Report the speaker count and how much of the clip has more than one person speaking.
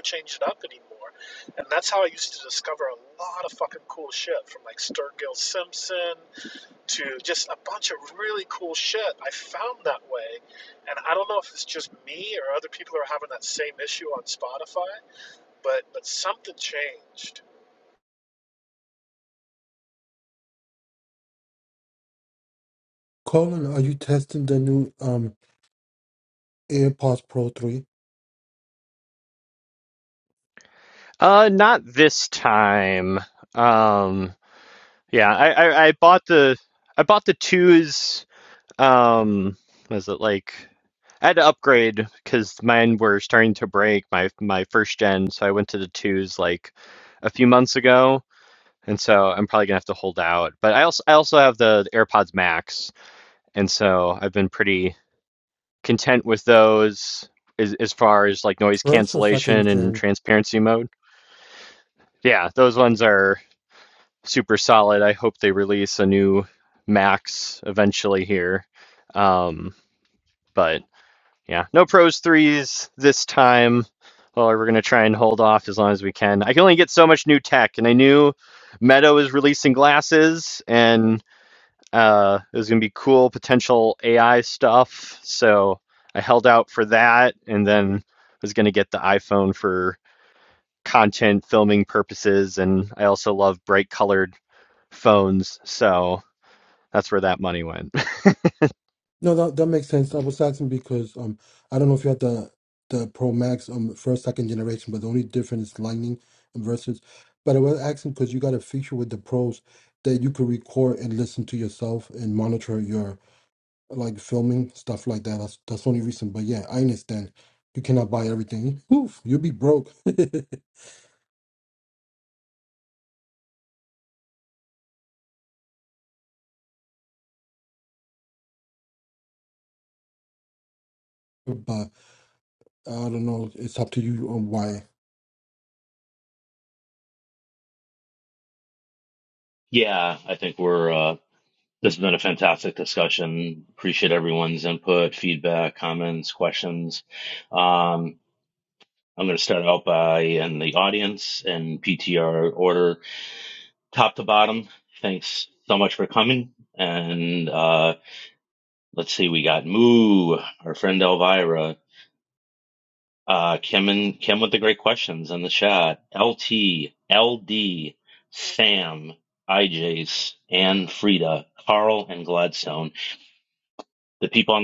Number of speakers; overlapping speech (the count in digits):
4, about 1%